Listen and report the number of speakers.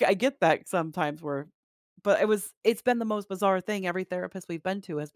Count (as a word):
one